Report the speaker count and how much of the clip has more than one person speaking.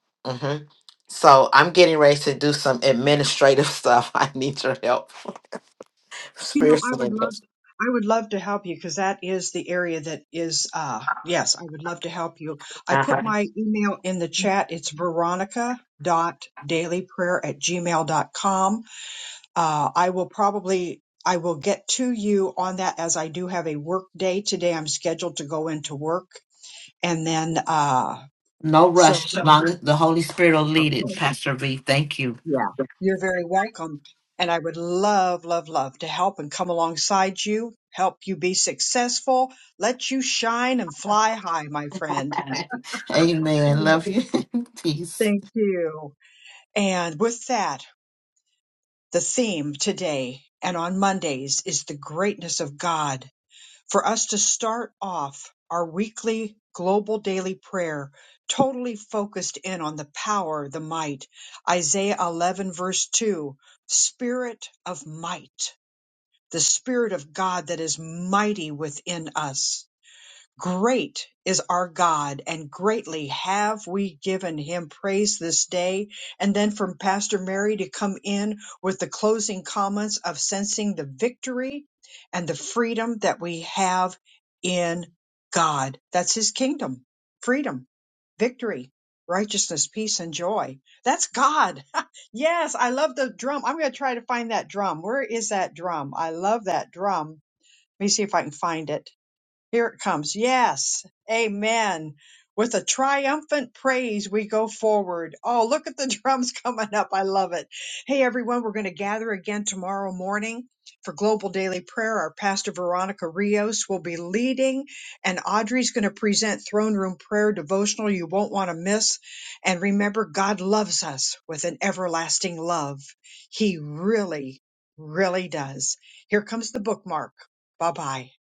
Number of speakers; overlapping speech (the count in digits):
2, about 2%